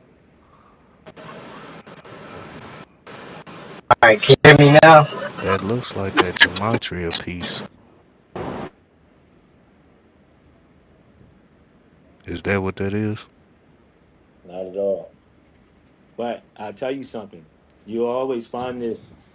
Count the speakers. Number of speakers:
3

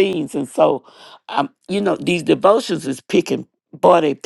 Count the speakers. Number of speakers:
1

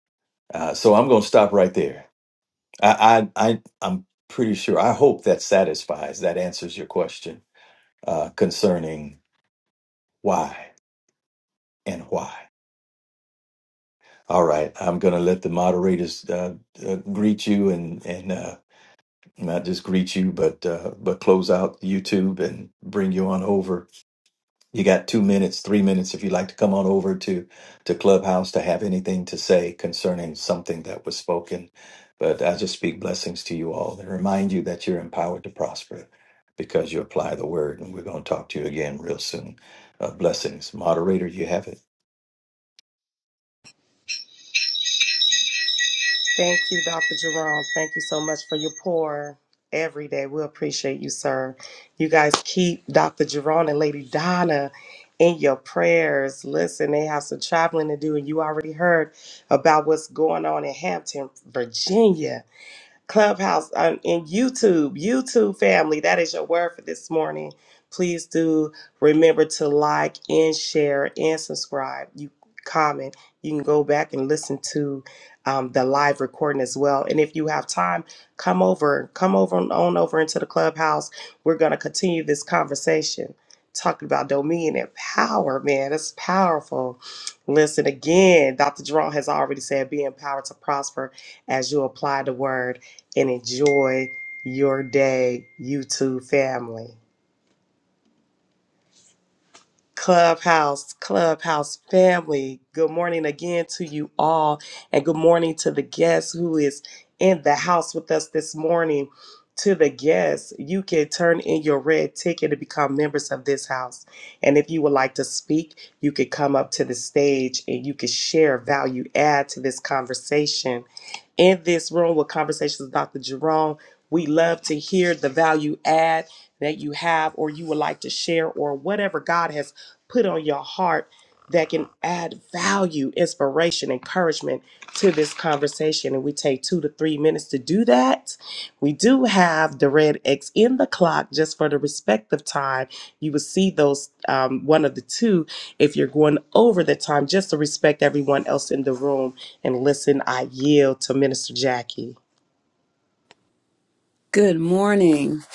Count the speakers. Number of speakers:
3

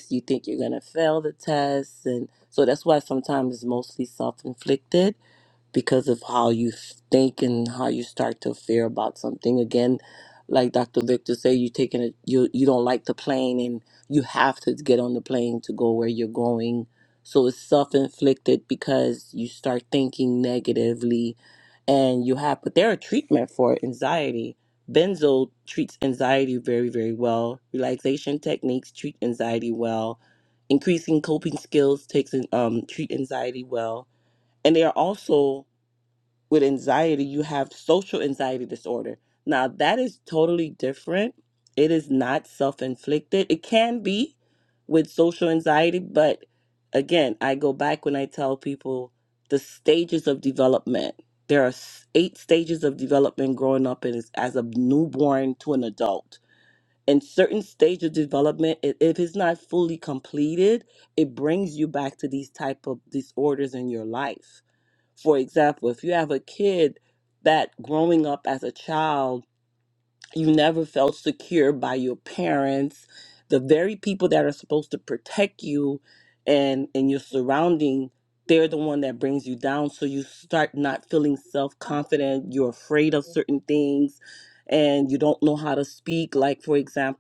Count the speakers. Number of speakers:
1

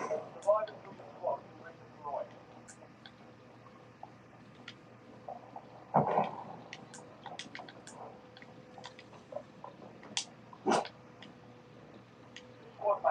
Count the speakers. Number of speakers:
0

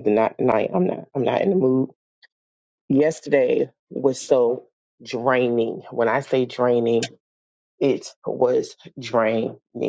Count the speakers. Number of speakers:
1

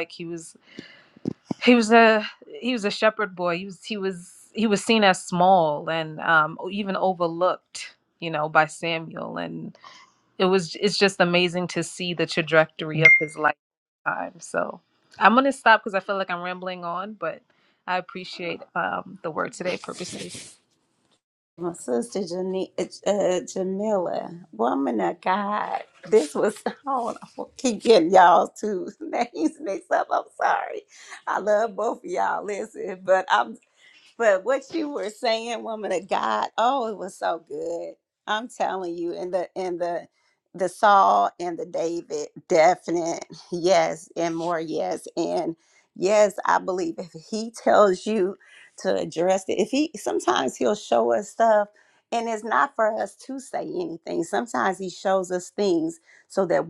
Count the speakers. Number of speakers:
2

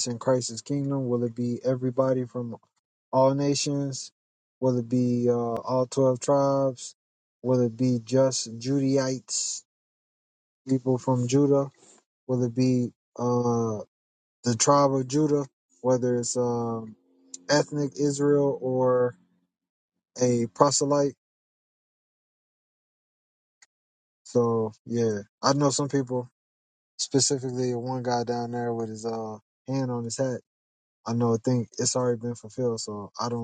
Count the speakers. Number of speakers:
1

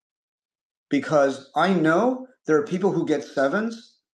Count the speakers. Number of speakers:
1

